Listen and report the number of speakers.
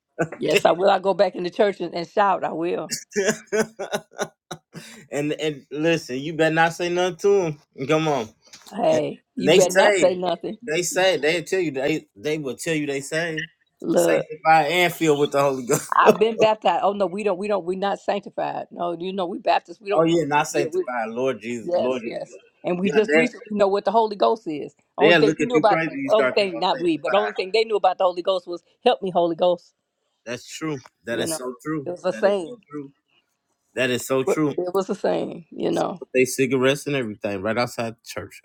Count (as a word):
two